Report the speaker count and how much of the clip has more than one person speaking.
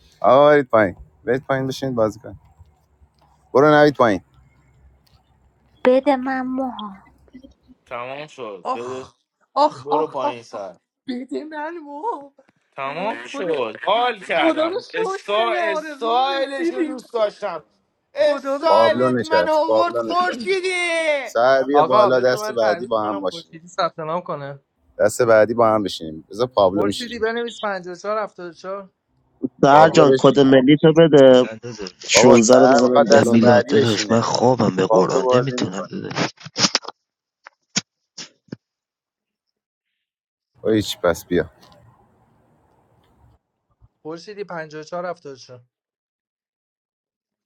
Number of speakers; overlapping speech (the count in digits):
6, about 26%